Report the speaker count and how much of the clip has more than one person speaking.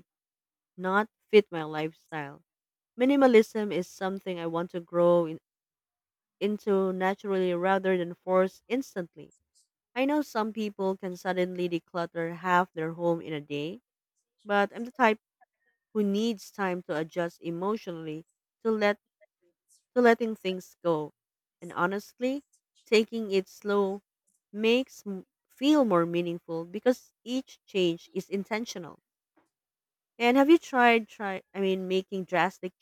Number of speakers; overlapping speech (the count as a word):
one, no overlap